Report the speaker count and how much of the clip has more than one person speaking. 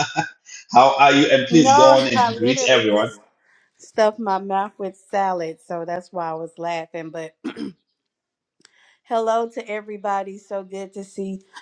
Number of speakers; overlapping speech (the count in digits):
2, about 14%